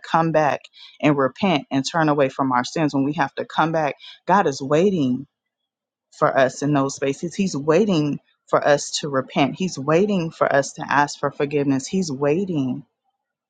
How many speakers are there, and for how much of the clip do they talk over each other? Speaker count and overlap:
1, no overlap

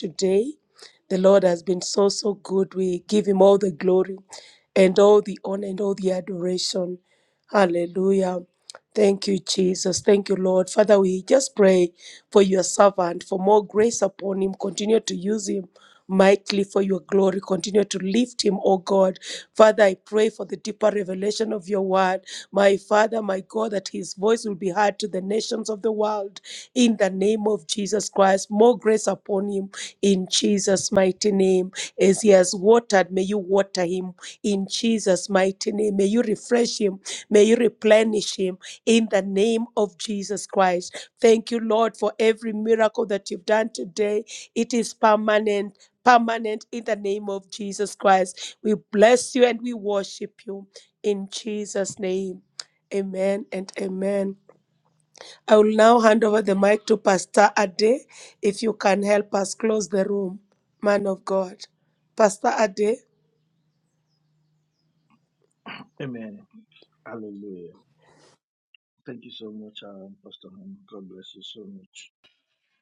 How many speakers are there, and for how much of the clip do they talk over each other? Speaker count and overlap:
2, no overlap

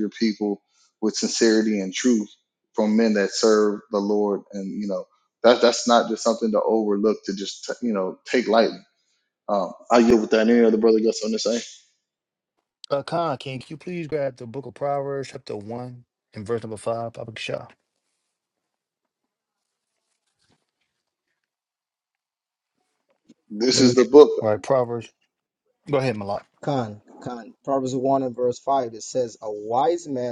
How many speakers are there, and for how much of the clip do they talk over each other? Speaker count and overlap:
3, about 1%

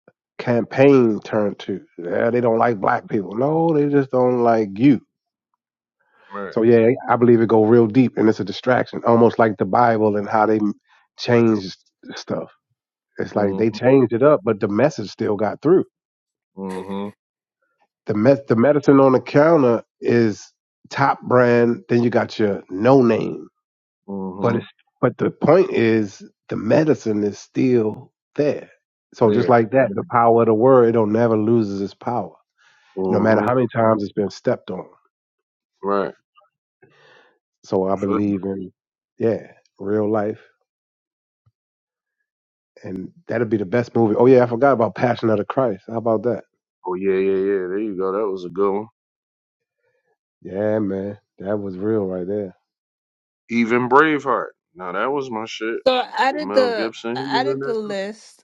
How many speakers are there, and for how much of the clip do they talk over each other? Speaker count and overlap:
3, about 5%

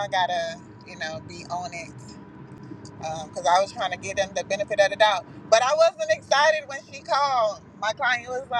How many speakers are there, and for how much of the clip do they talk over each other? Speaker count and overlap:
1, no overlap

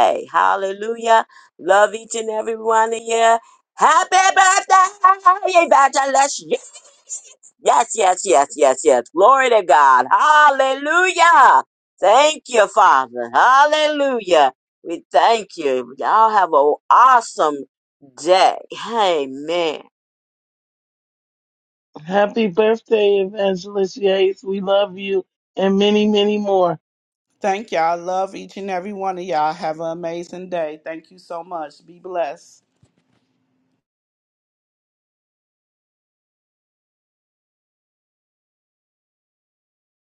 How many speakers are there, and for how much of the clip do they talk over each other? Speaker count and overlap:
3, no overlap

